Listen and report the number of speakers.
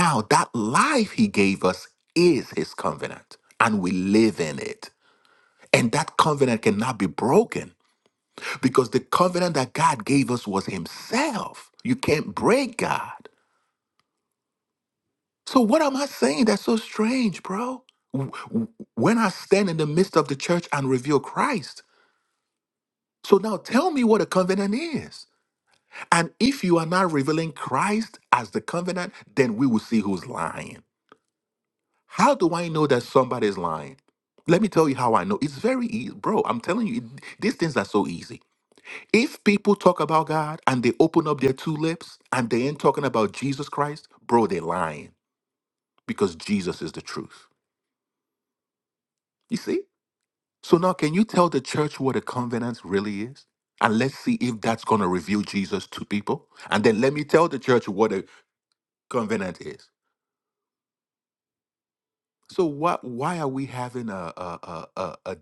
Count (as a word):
one